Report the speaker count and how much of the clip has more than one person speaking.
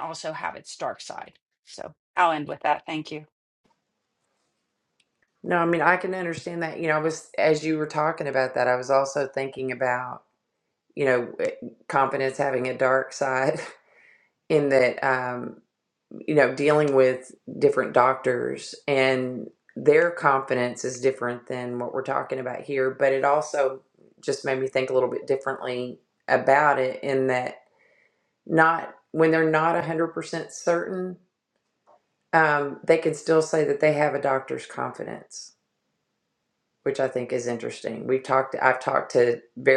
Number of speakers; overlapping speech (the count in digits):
2, no overlap